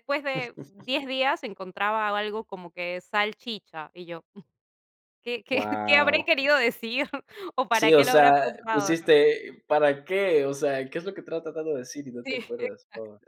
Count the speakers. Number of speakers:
two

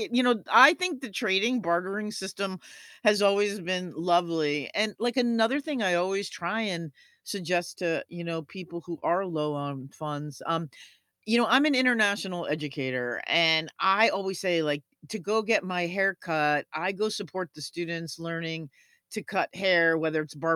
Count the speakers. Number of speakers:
one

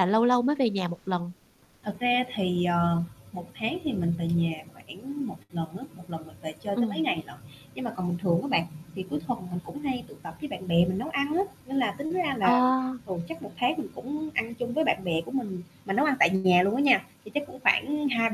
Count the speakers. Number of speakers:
two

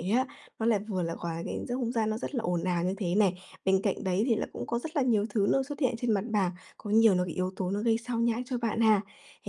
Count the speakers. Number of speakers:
one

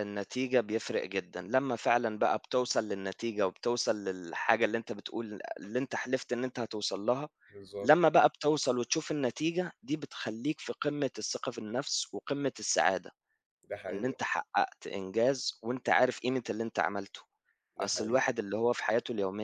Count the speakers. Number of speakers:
two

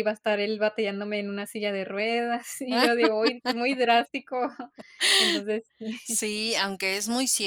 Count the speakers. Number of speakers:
two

